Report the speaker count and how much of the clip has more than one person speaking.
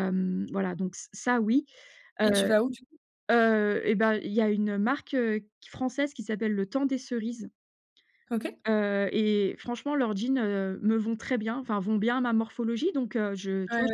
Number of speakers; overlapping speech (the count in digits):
2, about 4%